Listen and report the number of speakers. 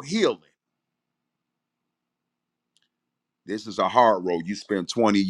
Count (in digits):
1